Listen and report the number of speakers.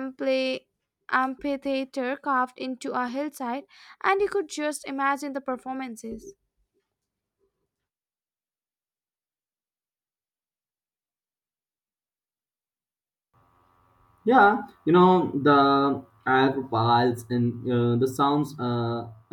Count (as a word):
two